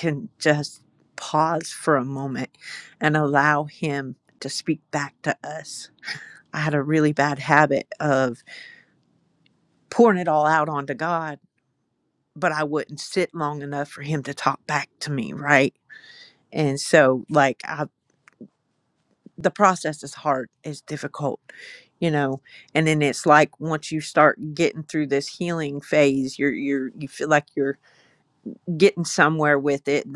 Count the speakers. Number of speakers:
1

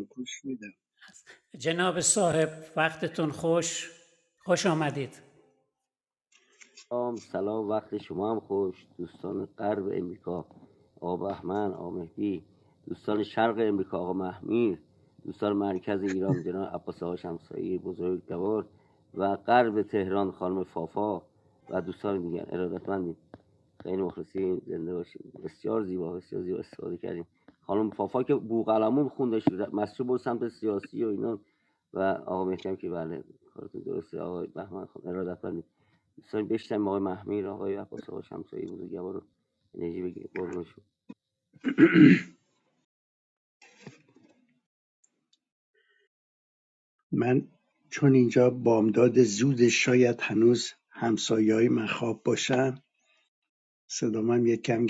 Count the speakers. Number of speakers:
3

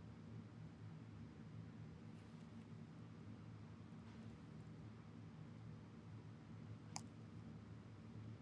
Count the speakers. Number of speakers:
0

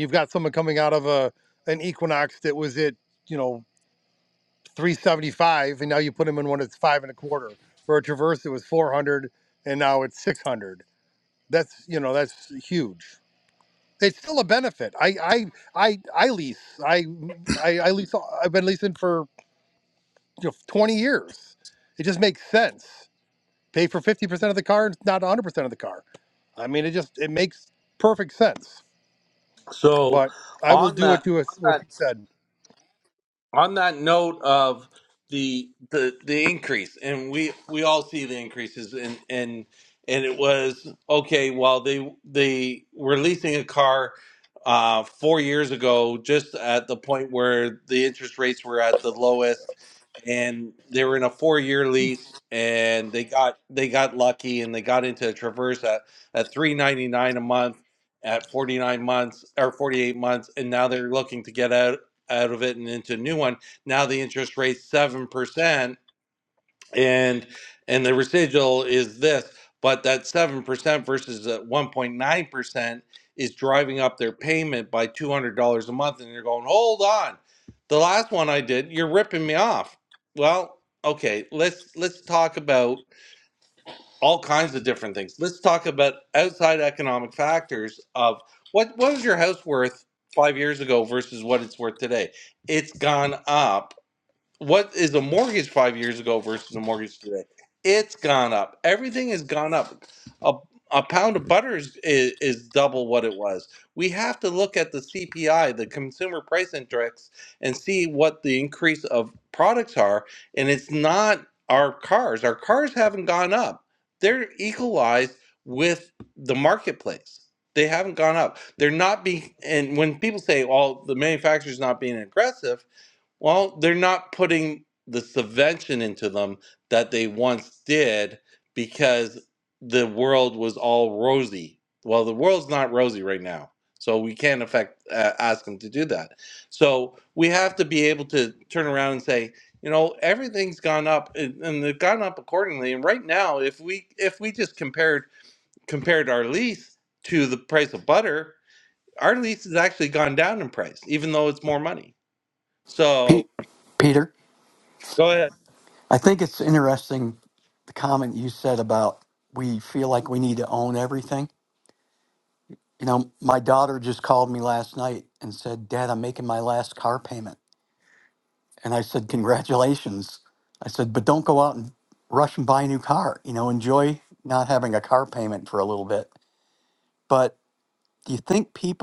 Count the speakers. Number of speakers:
3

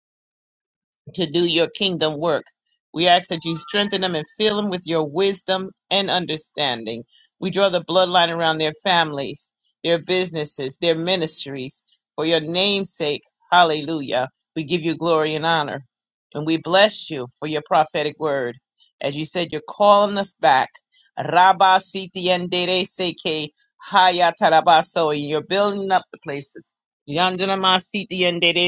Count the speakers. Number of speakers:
1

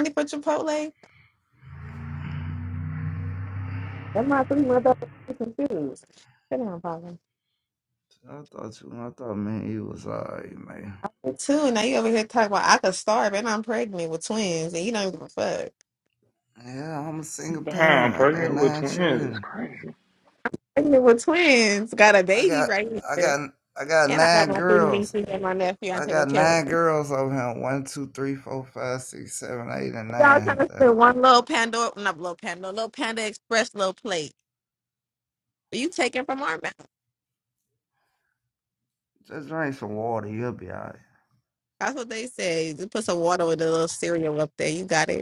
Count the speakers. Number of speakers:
3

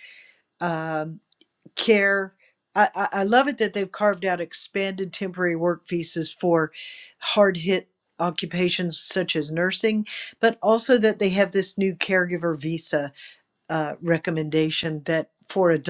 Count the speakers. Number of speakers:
1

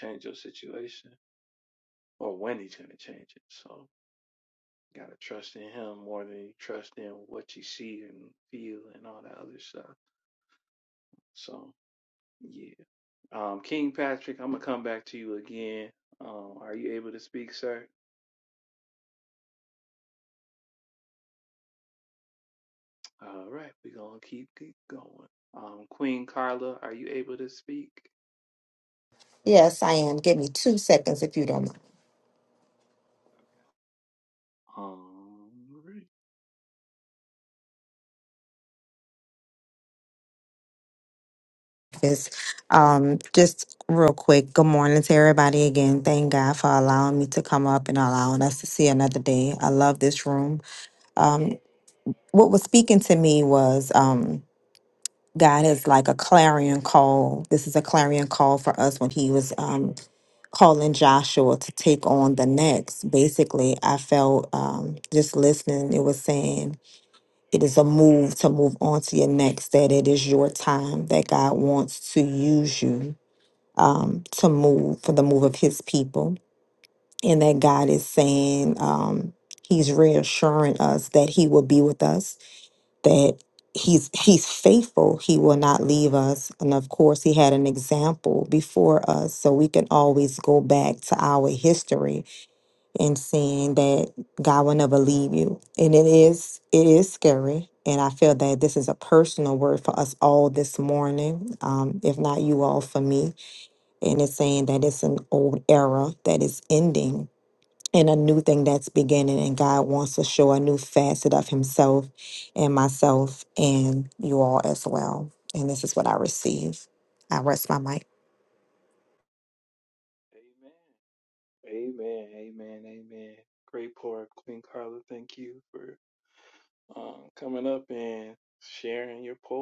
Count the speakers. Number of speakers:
2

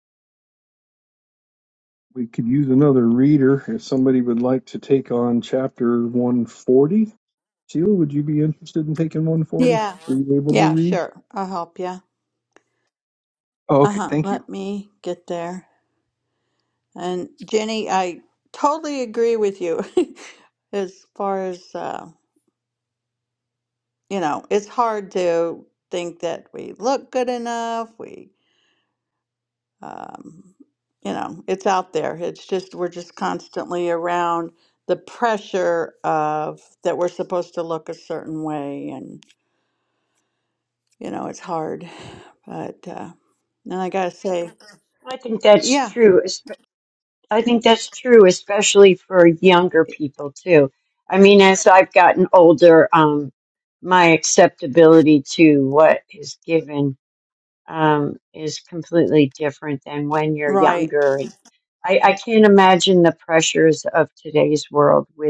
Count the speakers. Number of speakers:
3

